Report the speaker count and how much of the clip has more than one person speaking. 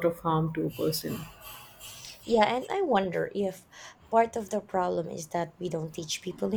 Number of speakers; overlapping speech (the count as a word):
two, no overlap